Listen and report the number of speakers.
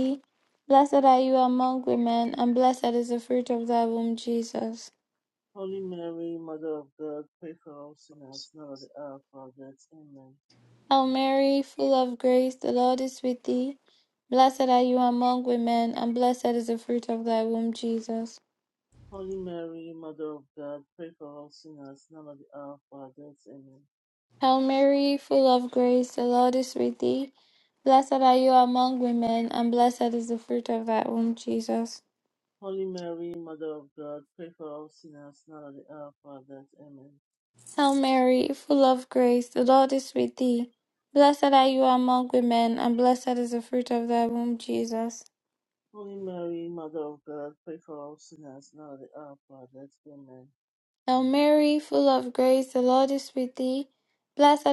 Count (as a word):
two